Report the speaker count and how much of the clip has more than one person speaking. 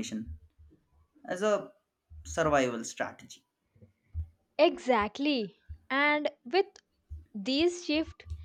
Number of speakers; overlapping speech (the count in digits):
2, no overlap